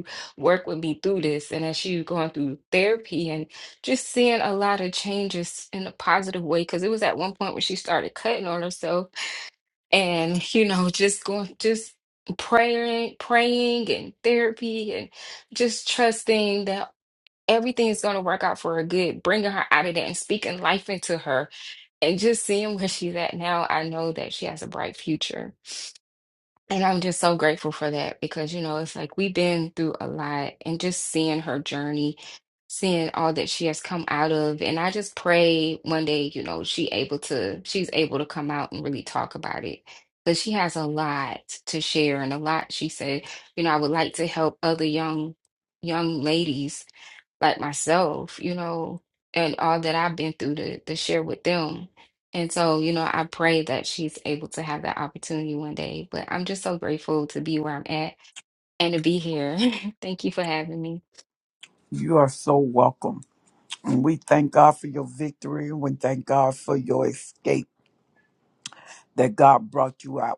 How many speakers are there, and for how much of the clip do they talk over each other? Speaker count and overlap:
2, no overlap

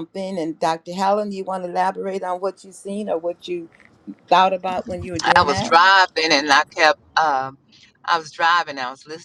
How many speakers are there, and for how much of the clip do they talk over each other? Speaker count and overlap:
2, about 5%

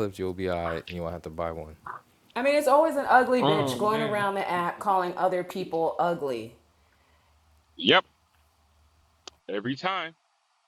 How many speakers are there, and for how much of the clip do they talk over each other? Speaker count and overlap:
3, about 8%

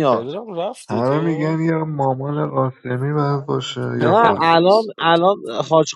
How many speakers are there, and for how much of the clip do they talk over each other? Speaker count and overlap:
3, about 24%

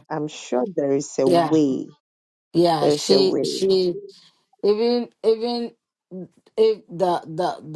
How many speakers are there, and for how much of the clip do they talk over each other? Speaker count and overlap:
2, about 15%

